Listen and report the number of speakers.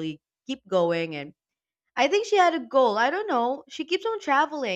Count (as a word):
one